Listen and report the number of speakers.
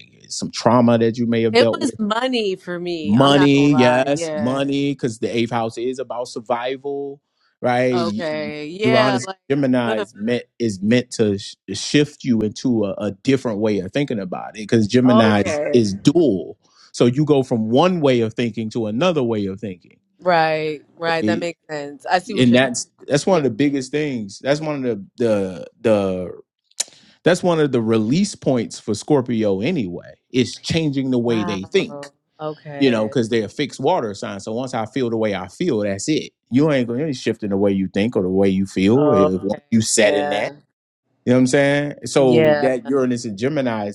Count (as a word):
two